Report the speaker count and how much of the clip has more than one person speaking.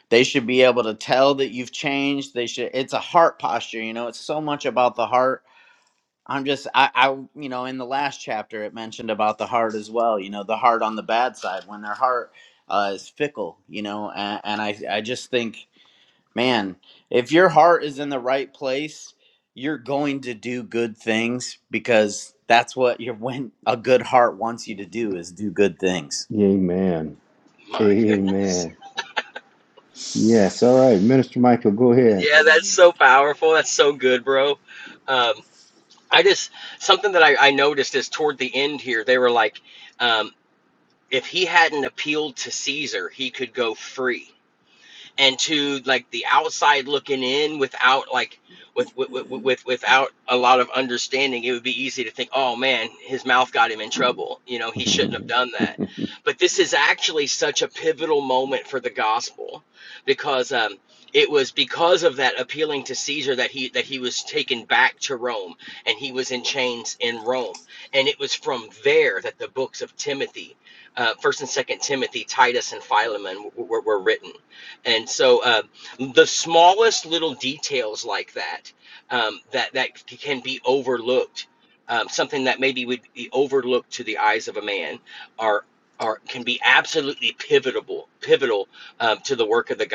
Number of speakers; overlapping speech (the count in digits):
3, about 1%